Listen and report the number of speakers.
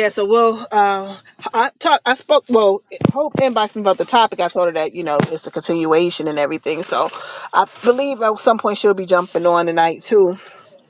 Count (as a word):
one